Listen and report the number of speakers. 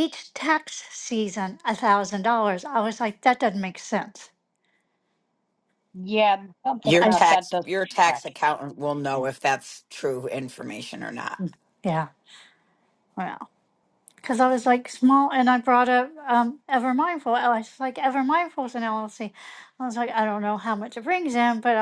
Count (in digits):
3